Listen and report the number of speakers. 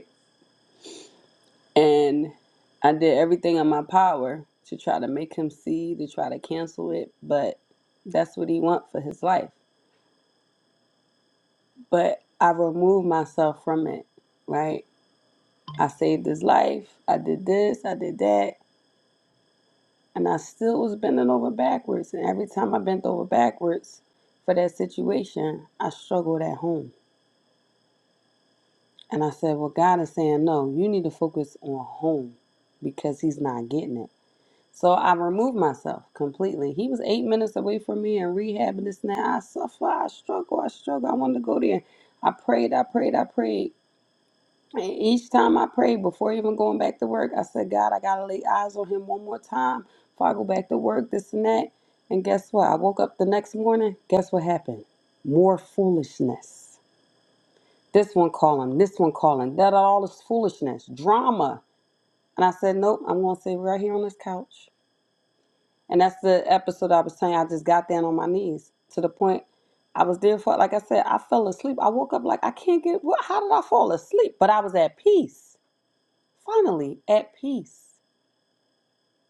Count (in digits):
1